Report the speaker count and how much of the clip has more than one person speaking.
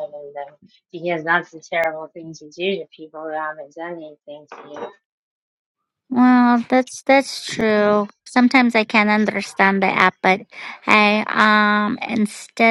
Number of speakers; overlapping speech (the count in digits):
2, no overlap